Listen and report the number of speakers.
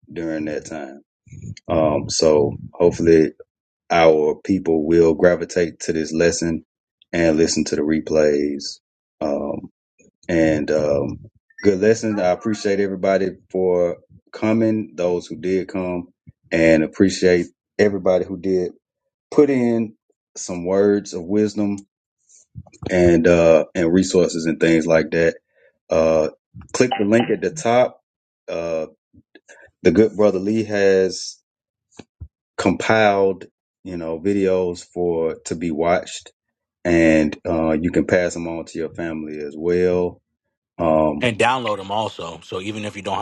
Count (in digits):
2